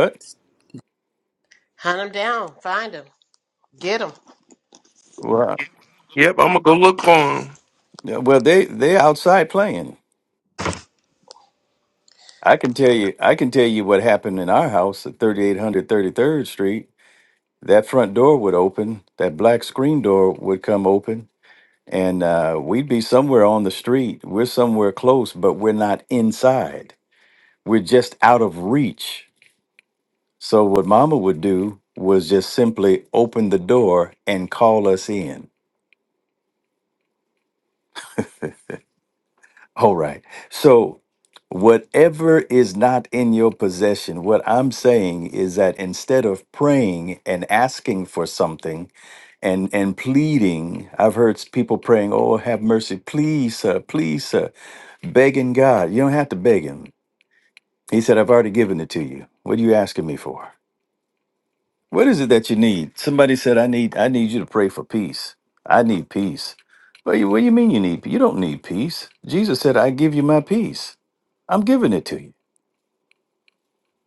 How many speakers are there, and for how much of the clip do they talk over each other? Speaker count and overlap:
3, no overlap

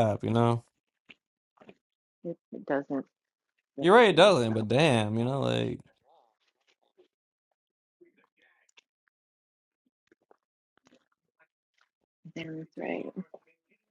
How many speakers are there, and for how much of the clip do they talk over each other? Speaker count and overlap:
2, about 6%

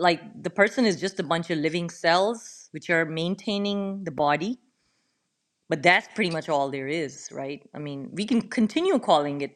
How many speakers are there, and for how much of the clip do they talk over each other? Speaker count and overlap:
1, no overlap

